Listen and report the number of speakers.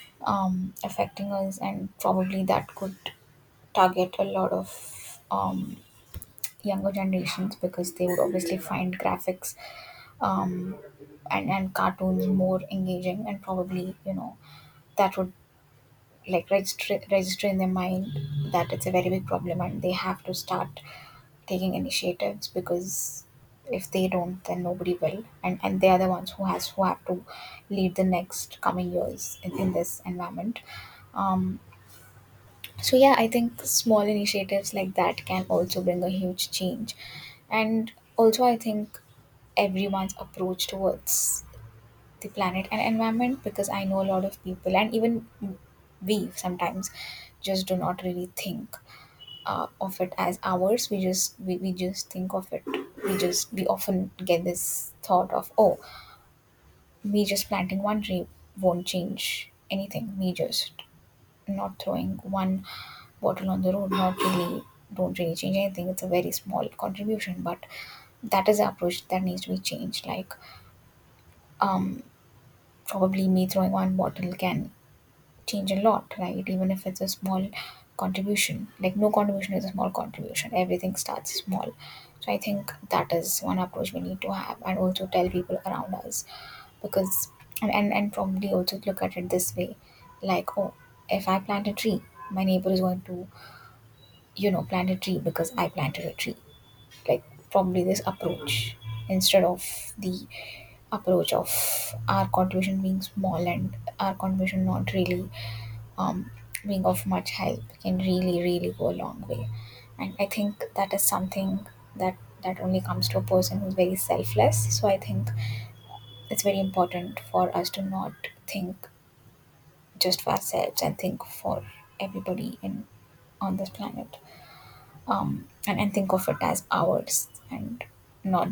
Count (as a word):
one